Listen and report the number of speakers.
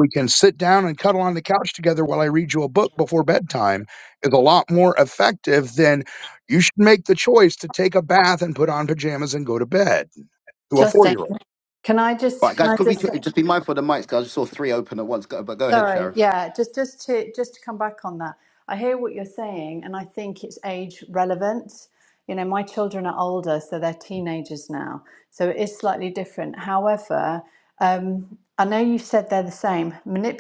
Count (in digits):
3